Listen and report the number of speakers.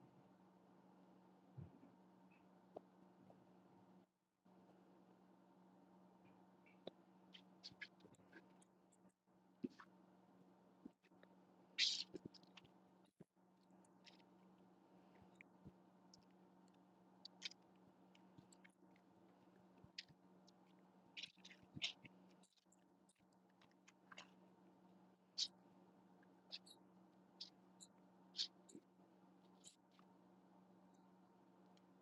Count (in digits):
0